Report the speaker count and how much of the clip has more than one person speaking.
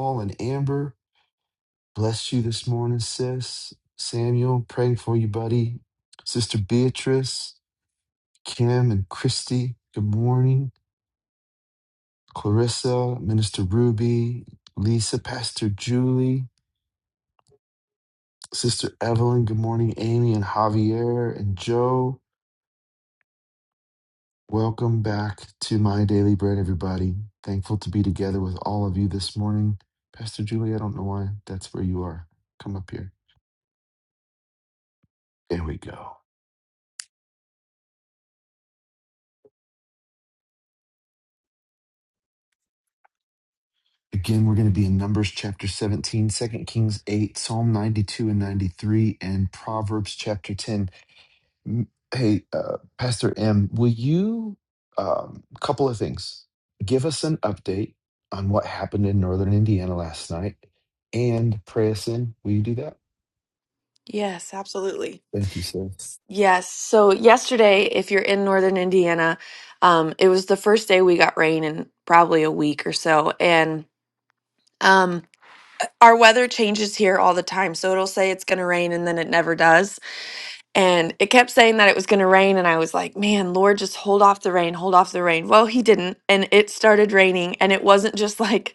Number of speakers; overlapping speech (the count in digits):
2, no overlap